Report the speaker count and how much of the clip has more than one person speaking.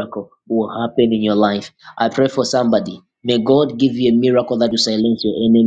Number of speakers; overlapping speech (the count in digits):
1, no overlap